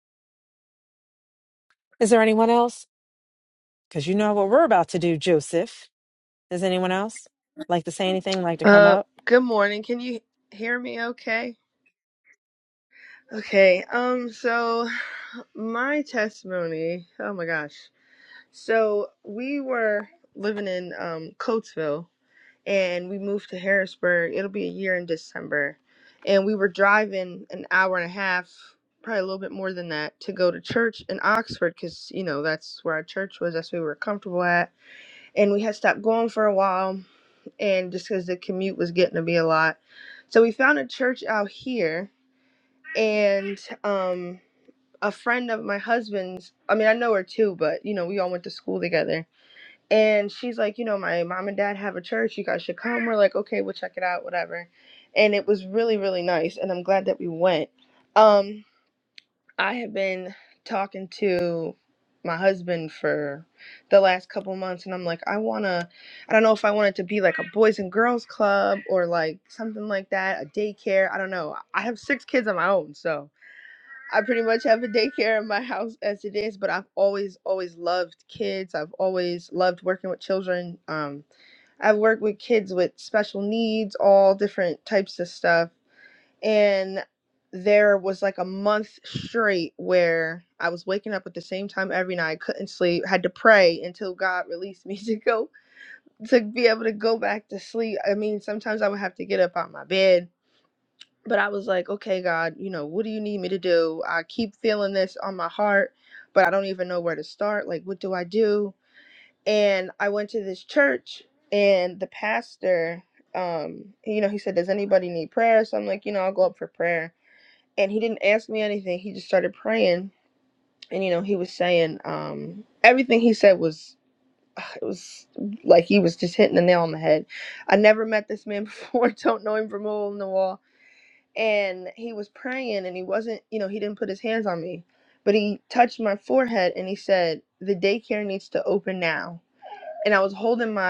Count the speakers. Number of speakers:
2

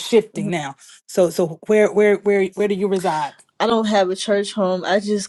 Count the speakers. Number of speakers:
2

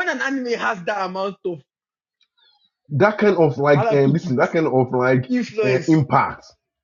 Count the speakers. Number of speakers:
2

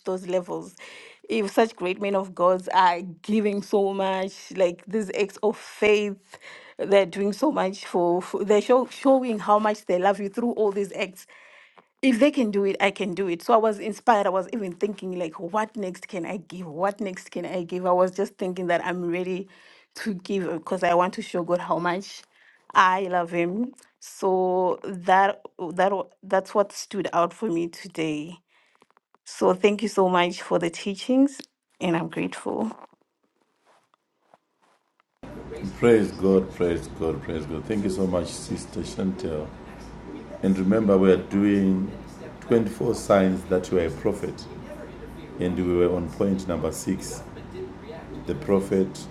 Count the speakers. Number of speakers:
2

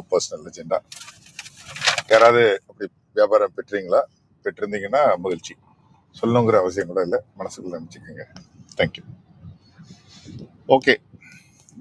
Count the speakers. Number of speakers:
1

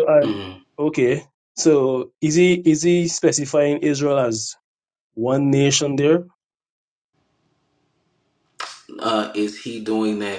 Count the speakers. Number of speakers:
2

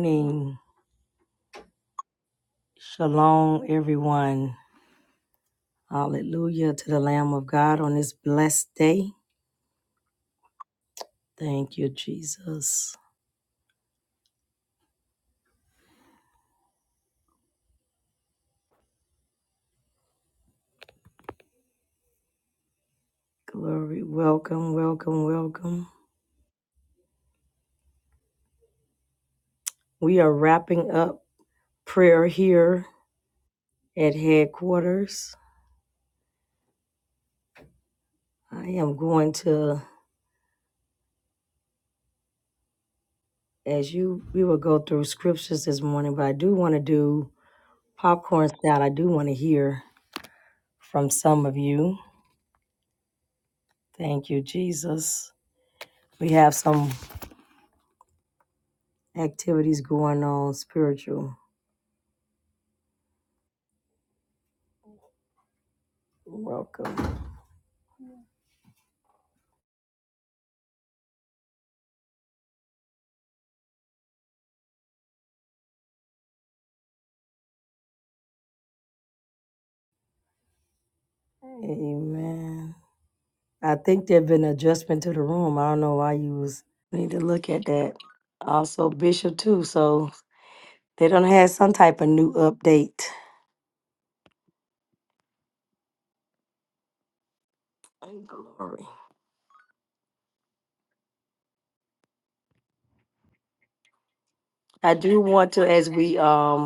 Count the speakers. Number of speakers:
1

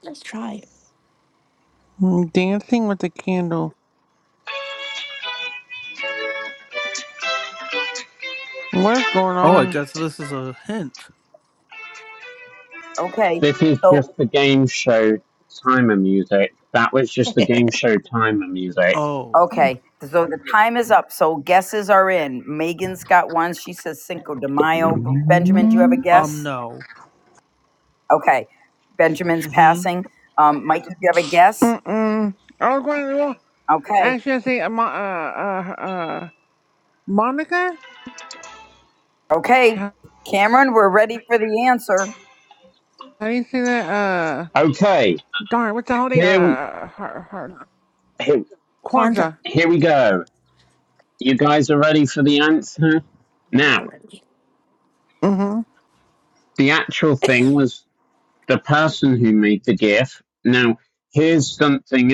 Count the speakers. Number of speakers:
5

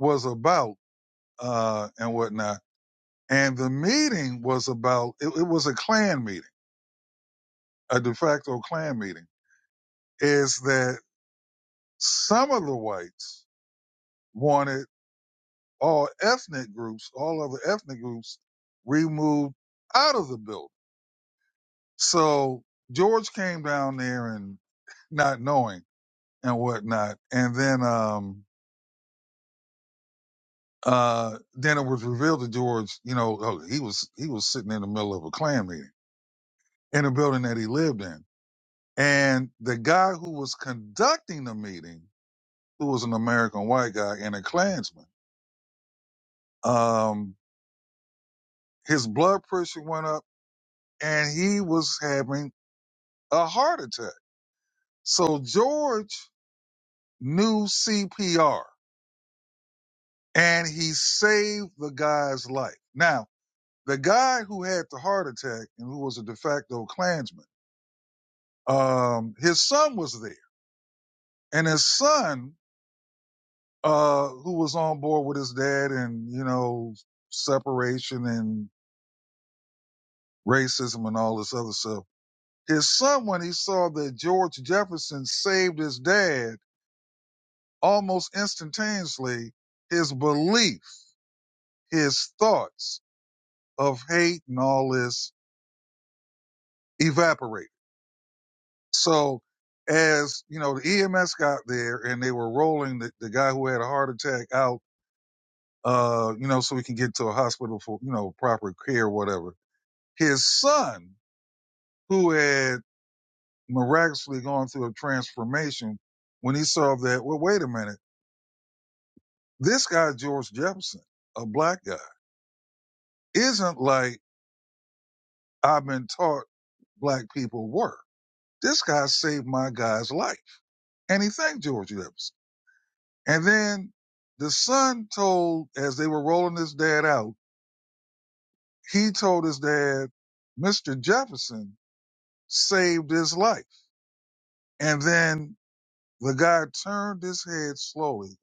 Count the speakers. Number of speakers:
1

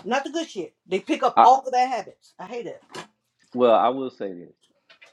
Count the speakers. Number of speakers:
2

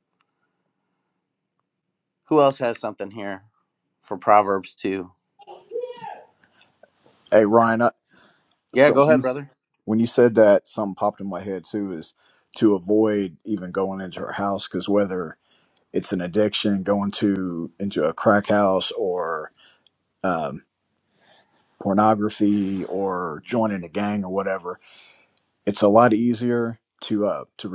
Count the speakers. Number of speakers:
2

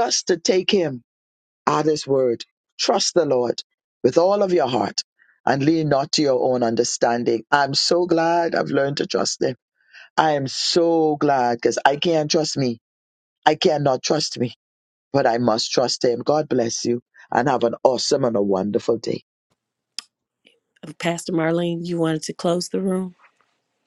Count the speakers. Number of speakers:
2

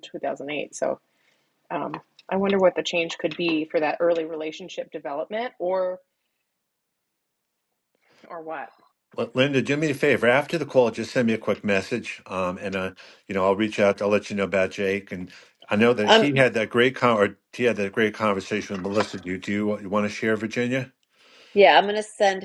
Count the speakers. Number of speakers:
3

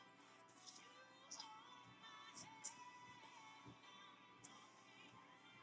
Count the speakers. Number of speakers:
0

